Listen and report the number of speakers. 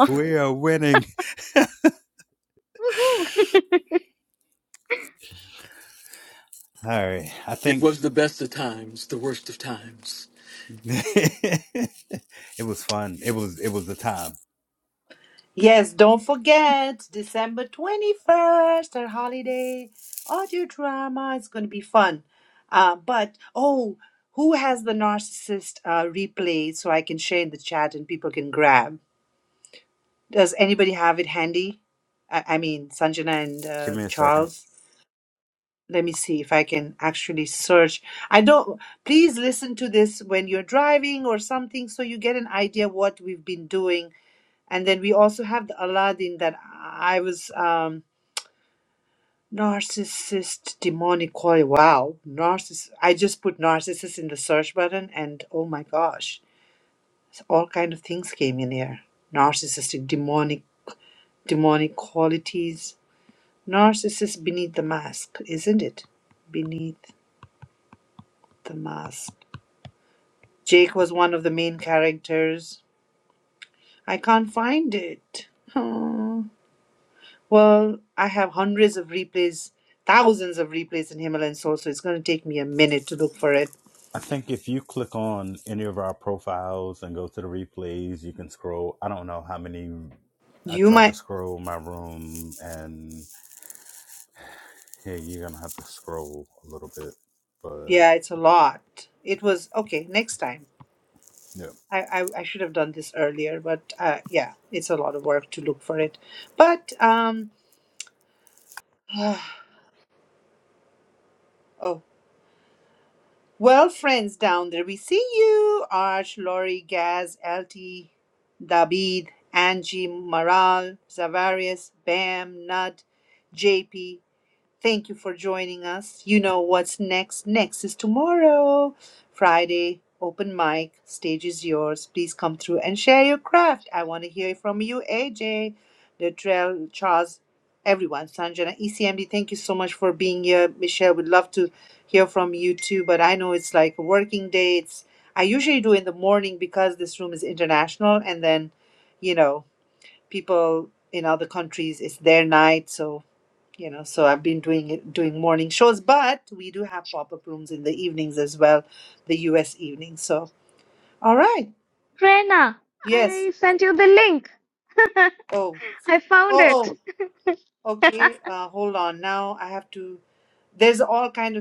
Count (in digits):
4